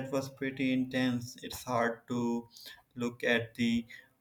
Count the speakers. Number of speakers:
1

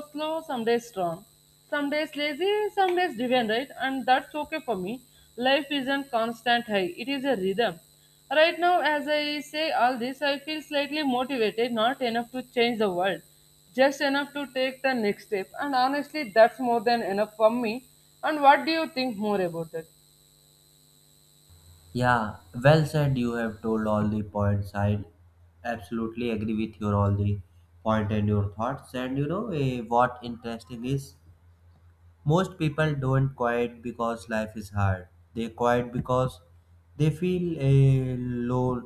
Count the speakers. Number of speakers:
2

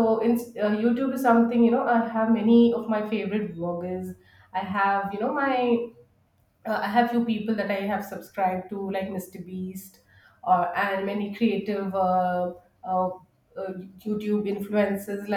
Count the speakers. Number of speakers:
1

